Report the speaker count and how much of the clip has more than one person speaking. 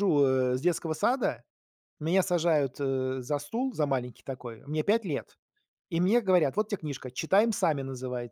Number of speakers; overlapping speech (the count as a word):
one, no overlap